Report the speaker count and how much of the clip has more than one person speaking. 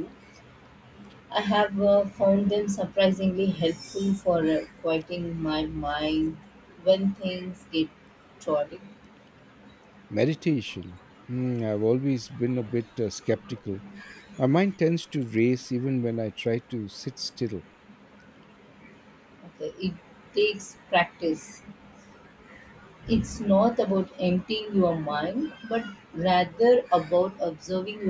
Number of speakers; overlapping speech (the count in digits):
2, no overlap